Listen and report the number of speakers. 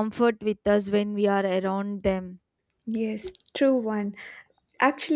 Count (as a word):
two